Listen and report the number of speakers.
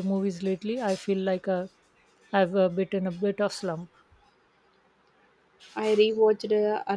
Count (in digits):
2